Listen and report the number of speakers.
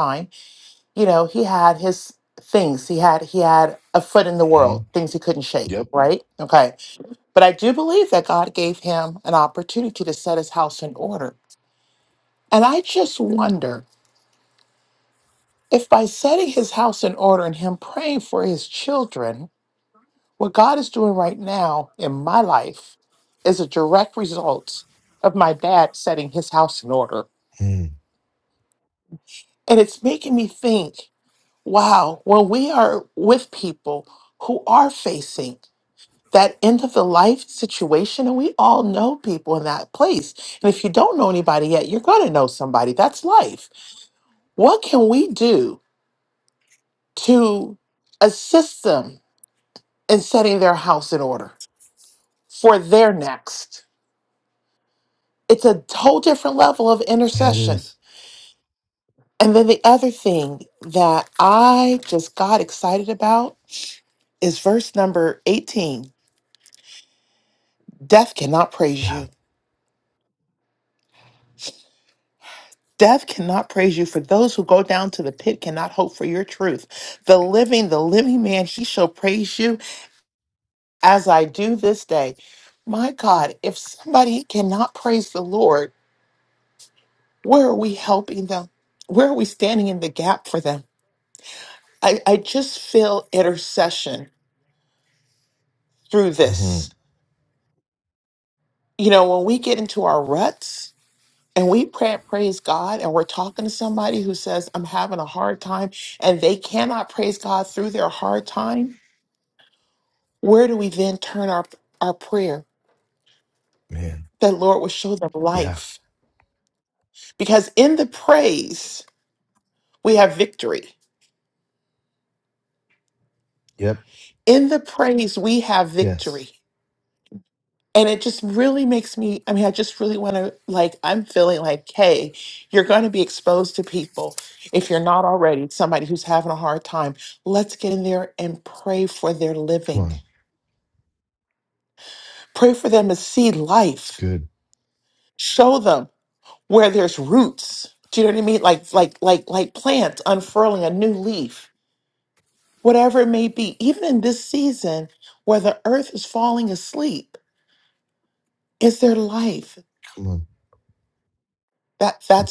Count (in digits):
2